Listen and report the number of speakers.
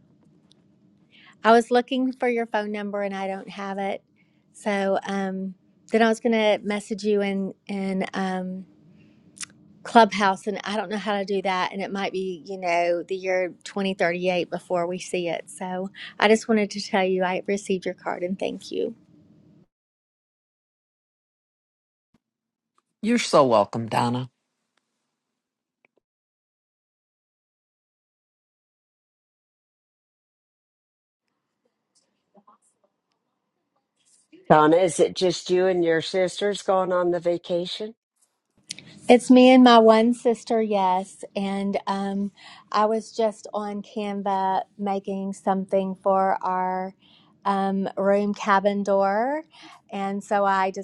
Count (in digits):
3